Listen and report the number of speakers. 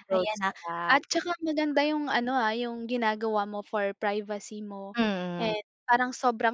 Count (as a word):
two